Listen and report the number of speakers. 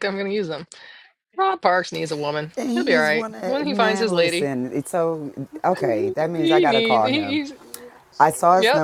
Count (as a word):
two